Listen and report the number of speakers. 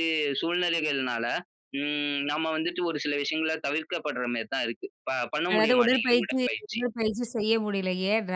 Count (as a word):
two